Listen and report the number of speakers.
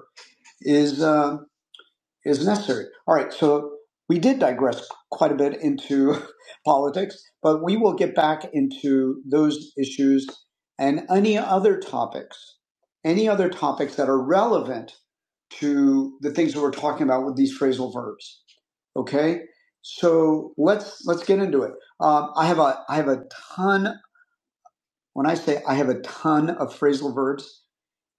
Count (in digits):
1